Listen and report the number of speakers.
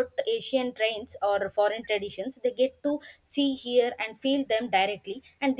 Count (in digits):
1